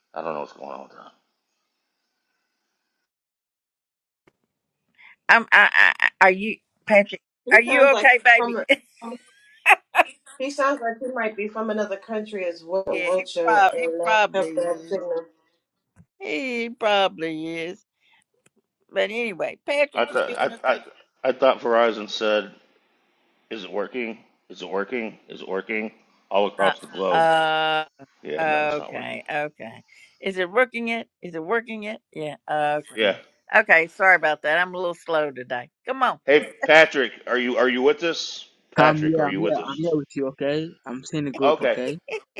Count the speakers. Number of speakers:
four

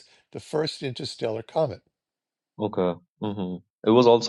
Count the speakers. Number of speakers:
two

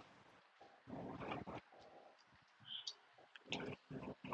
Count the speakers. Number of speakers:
zero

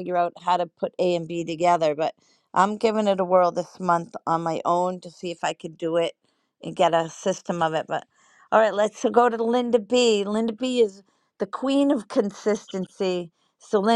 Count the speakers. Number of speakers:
one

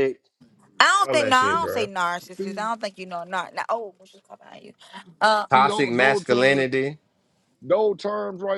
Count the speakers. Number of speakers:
three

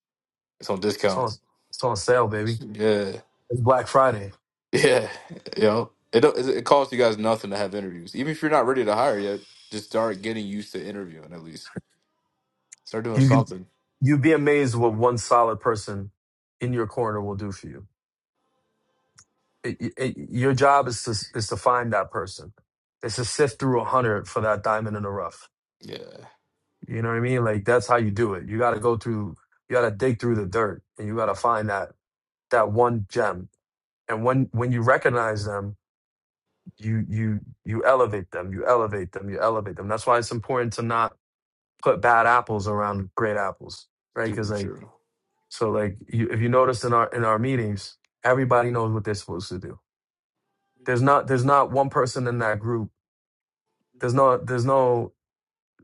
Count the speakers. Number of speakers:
two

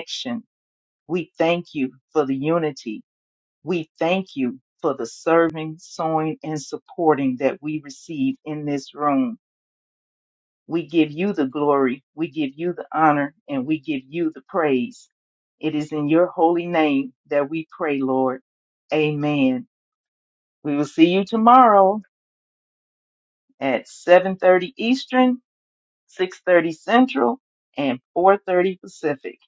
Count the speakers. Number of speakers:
one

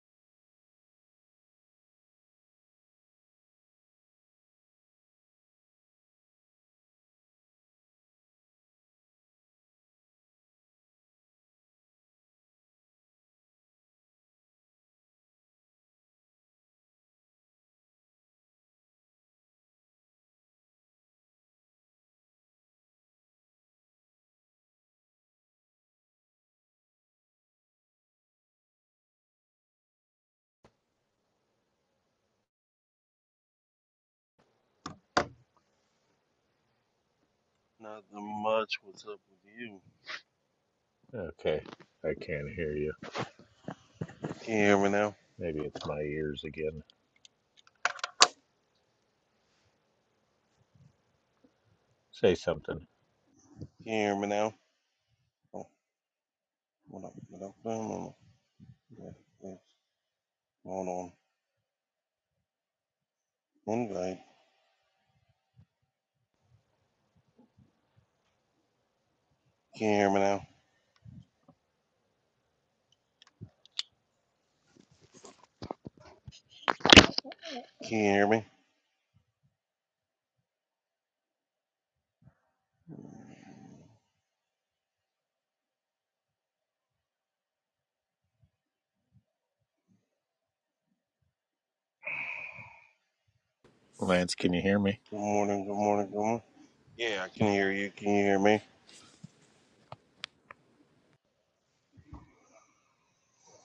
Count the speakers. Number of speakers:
two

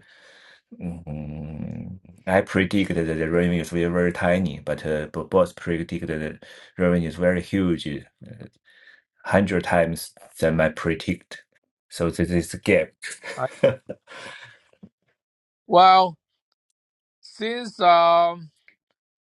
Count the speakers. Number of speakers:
two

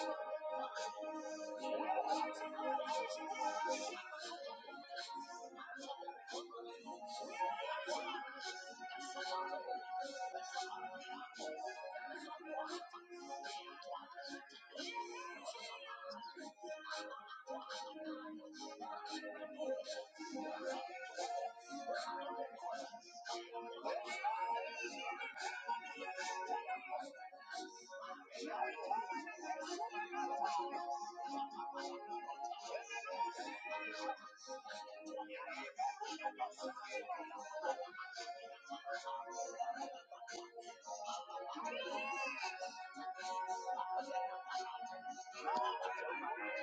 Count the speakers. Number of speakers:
zero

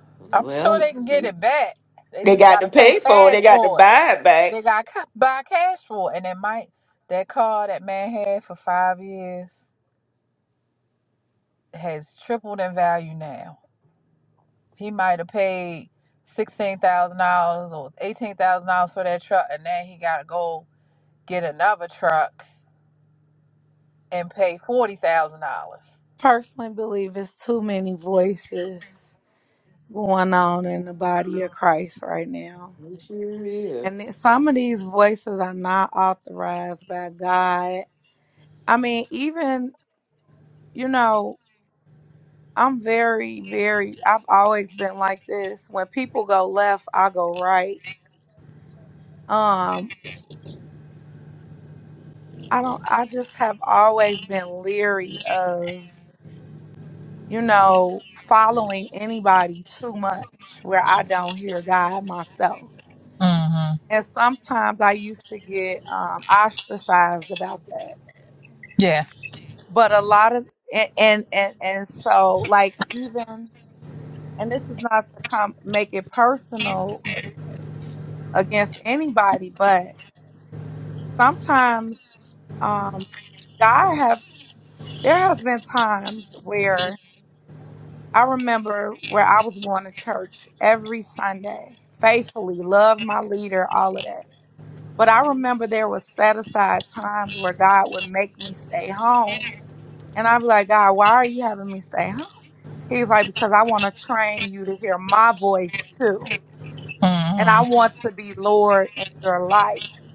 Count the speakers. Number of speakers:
three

